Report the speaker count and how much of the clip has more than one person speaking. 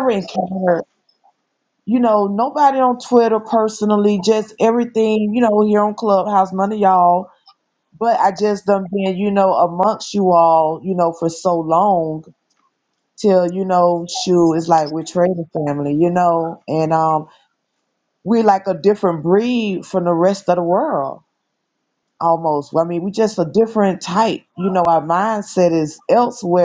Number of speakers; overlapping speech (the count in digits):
1, no overlap